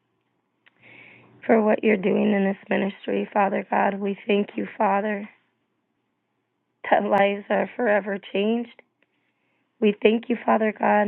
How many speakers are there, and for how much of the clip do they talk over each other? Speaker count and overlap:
1, no overlap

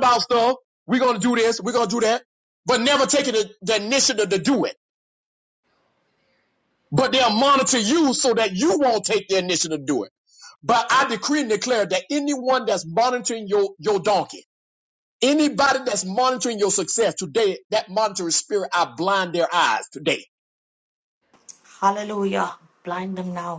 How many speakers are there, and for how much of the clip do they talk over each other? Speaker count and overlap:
2, no overlap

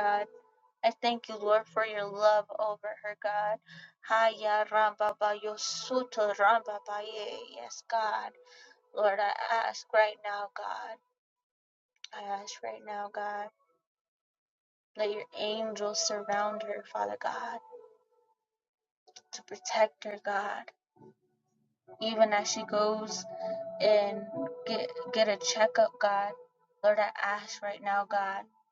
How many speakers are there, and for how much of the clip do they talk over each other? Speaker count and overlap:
1, no overlap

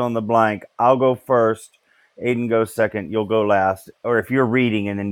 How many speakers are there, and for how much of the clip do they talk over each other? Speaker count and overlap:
1, no overlap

